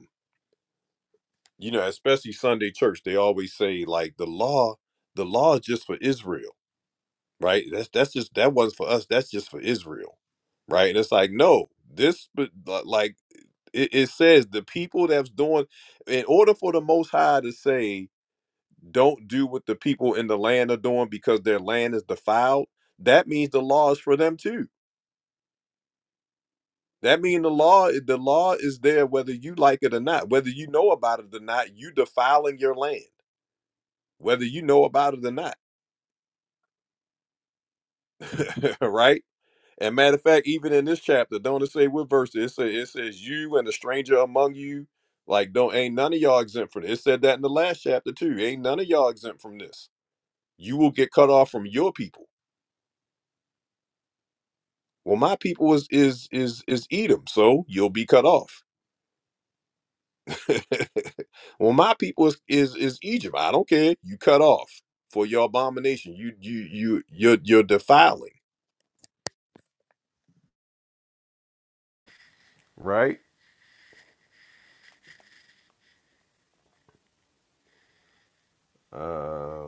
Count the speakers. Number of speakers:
one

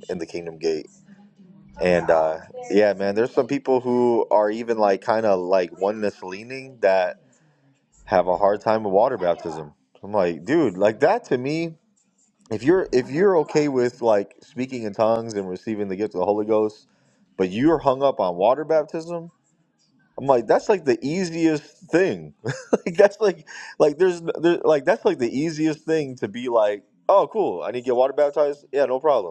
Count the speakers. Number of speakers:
one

